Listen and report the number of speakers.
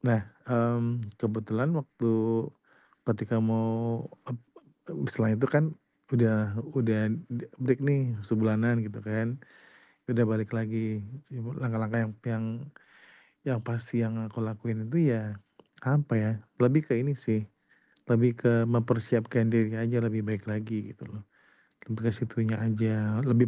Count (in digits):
1